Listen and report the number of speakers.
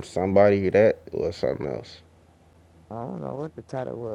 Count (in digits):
2